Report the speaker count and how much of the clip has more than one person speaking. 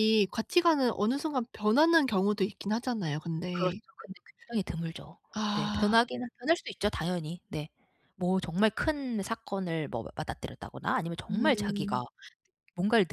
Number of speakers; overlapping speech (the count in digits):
2, about 11%